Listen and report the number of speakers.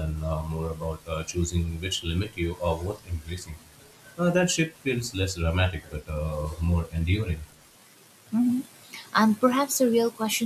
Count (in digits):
2